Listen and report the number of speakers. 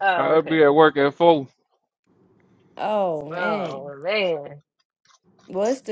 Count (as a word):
three